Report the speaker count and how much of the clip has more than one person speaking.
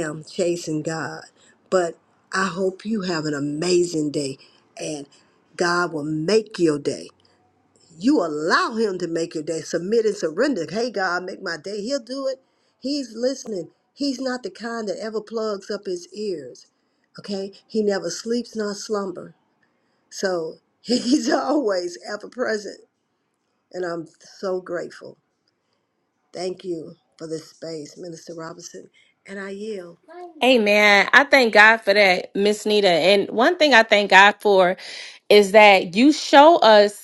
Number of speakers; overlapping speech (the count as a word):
two, no overlap